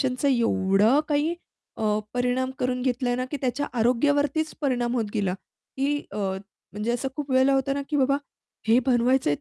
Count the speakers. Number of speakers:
1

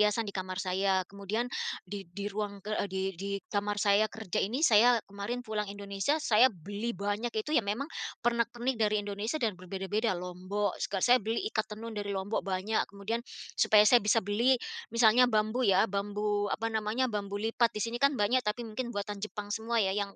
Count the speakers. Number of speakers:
1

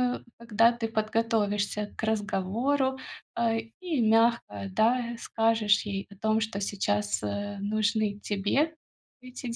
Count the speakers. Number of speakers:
1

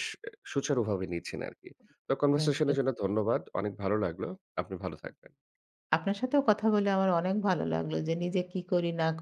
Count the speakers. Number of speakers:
2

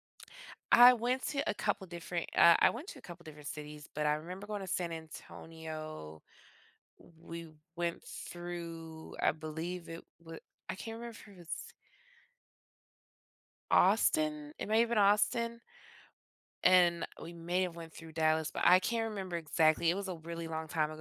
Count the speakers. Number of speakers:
1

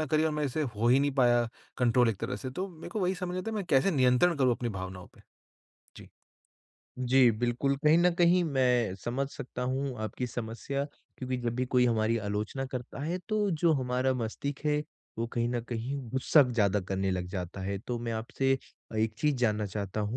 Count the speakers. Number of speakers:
2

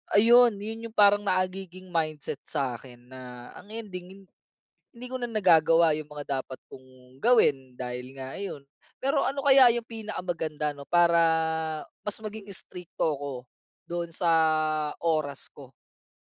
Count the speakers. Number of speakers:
1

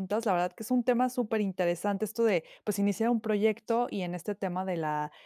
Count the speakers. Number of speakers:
1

